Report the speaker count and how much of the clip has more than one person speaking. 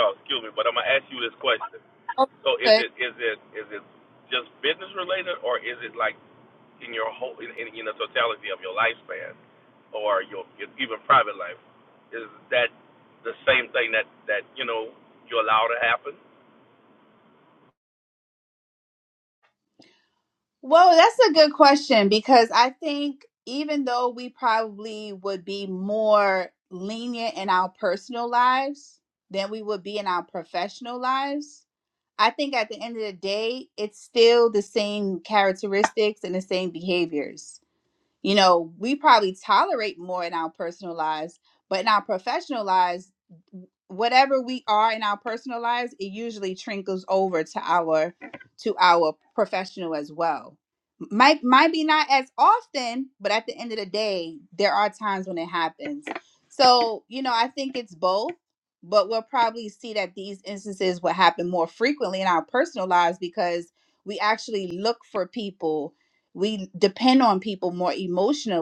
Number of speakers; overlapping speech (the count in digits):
2, under 1%